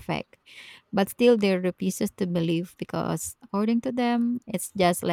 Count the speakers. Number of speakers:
1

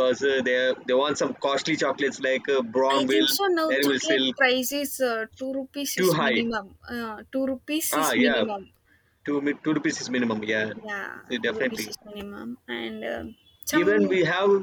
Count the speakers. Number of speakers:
2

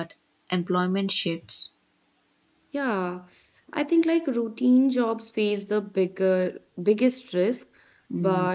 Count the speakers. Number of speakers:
2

